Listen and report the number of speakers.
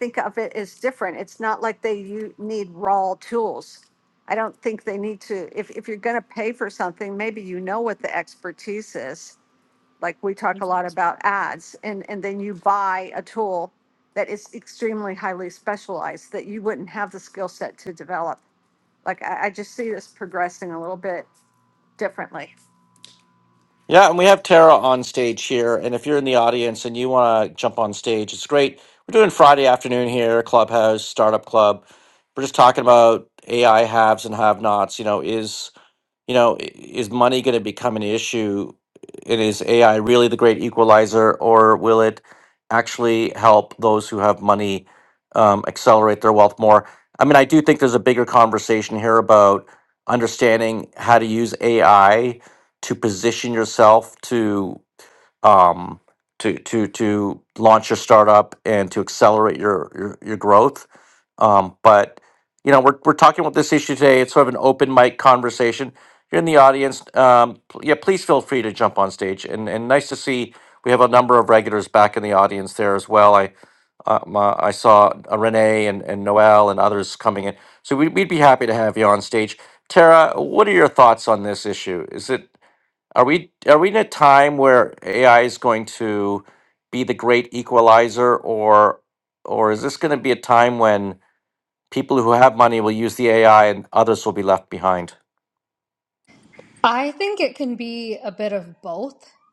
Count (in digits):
3